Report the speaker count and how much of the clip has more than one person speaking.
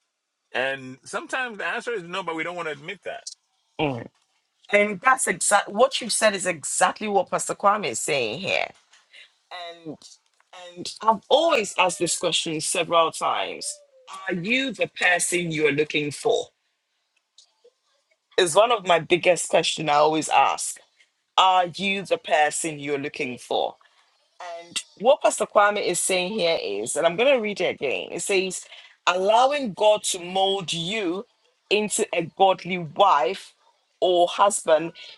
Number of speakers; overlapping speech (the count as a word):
two, no overlap